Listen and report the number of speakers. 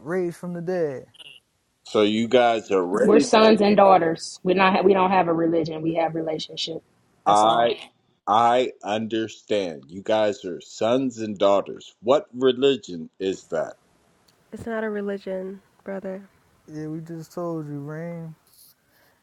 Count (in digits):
4